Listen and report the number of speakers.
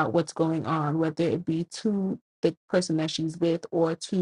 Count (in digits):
1